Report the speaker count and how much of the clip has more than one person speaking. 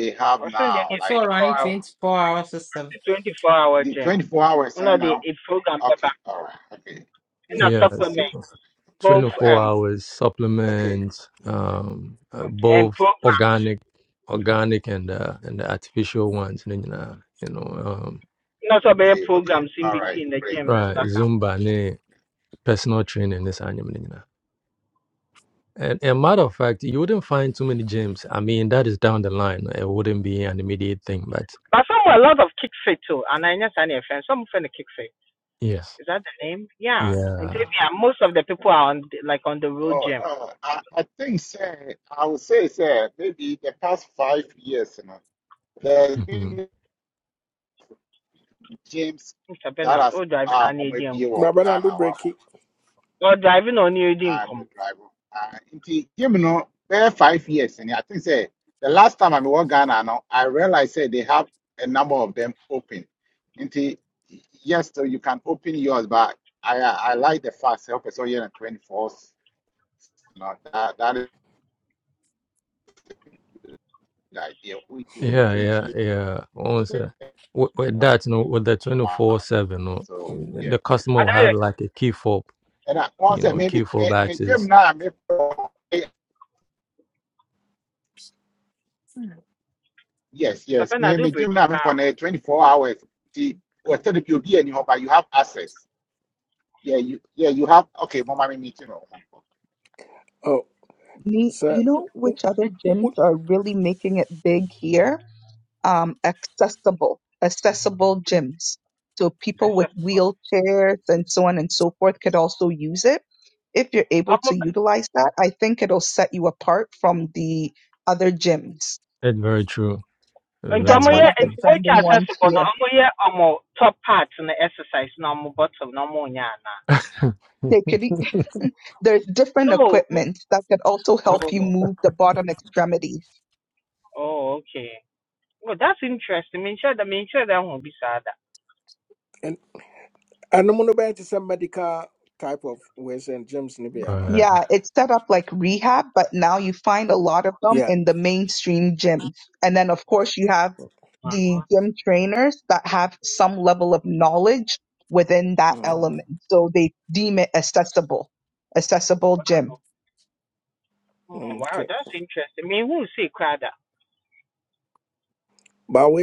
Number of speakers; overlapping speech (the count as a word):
six, about 13%